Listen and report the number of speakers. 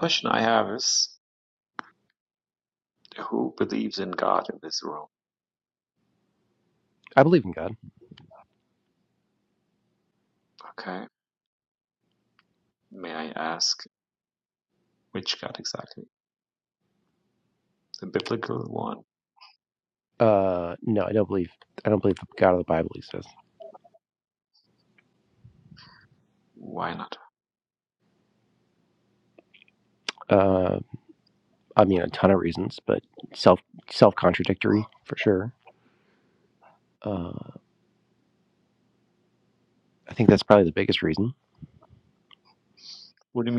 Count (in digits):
2